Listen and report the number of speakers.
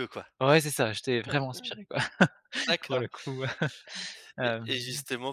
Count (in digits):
2